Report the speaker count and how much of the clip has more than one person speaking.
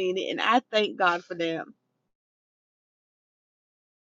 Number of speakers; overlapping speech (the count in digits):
1, no overlap